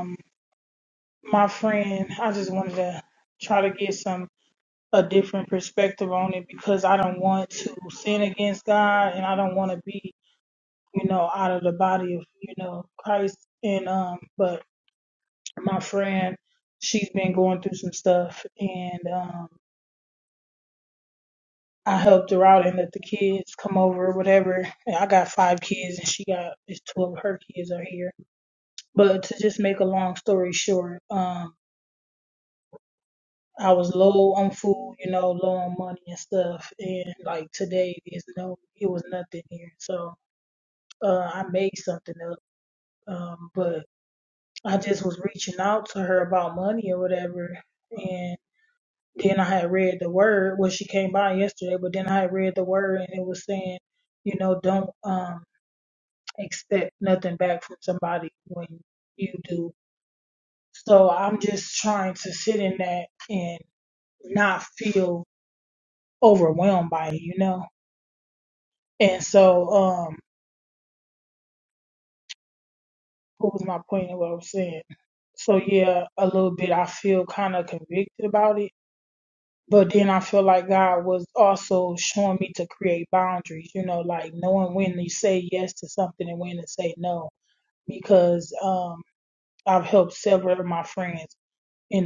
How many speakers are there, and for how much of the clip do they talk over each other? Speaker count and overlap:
1, no overlap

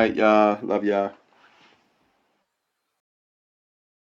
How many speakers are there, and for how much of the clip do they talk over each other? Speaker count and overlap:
1, no overlap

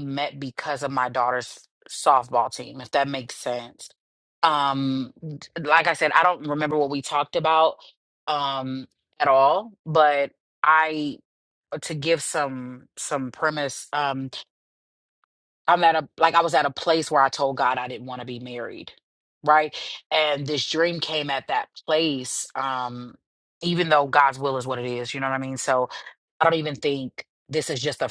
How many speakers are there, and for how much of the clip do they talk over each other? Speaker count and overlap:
1, no overlap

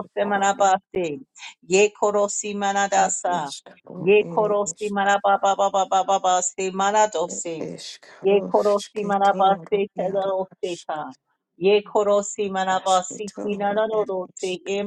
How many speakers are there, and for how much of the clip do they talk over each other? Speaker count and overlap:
2, about 49%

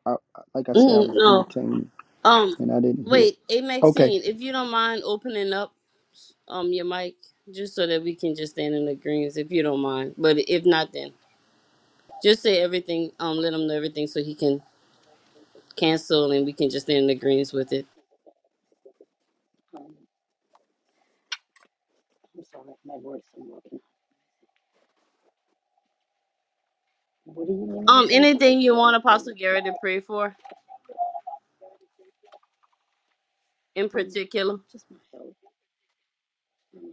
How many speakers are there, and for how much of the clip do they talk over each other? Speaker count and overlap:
3, about 8%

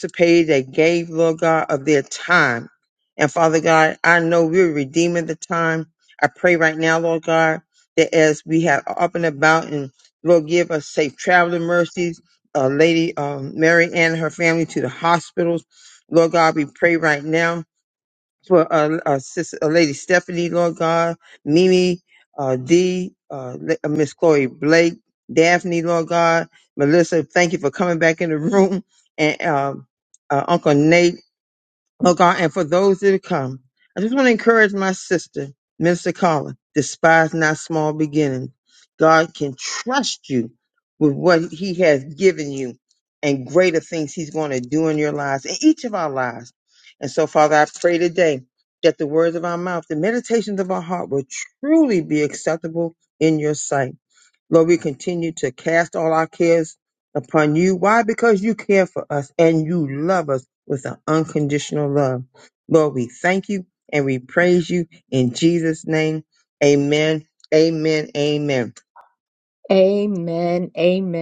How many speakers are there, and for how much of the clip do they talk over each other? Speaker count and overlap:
2, no overlap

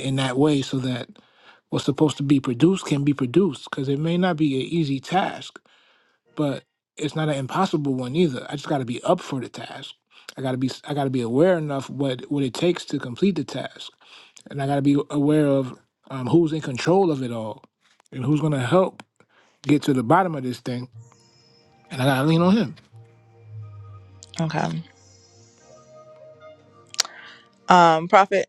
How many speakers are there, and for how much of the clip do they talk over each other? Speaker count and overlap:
2, no overlap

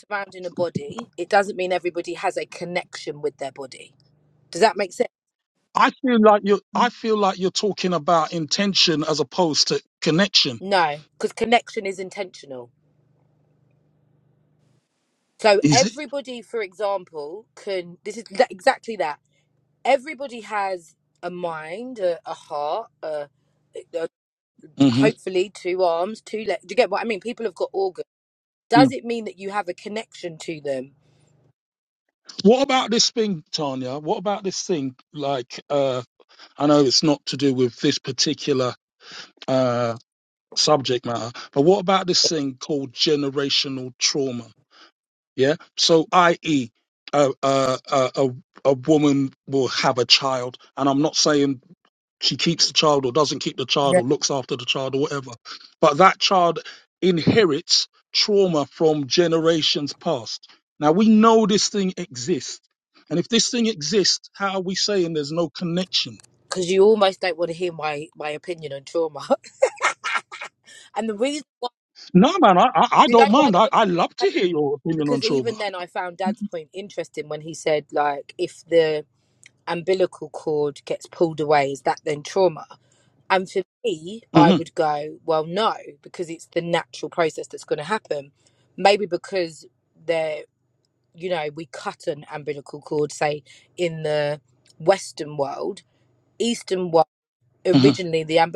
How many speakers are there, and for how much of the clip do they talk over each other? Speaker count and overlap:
2, about 2%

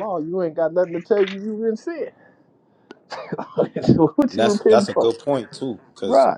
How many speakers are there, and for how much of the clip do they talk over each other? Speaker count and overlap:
2, about 14%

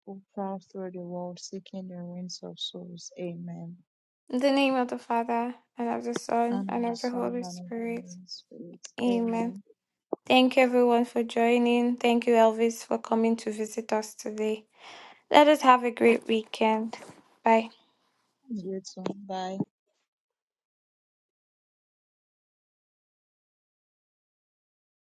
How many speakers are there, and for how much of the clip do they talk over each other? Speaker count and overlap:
2, about 8%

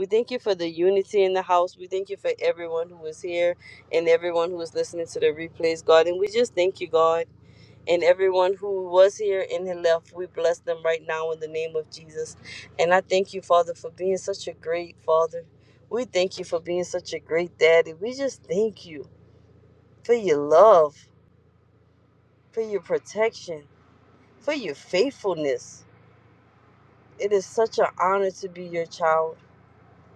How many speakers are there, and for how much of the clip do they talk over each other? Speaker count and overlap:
1, no overlap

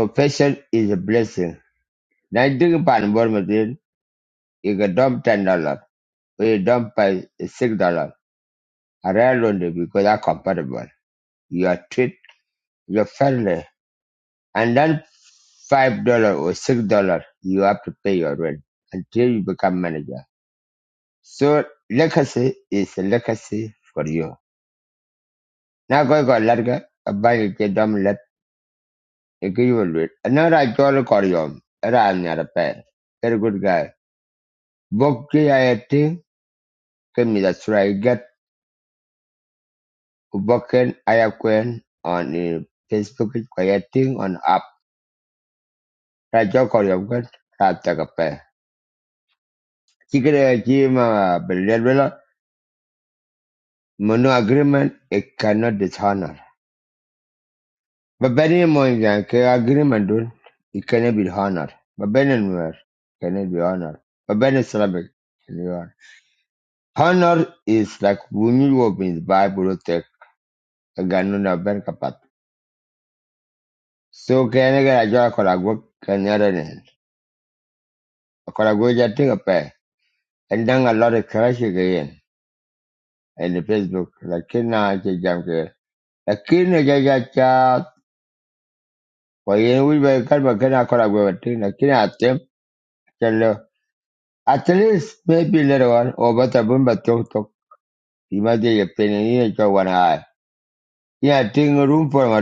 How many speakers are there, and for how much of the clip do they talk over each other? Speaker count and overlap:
1, no overlap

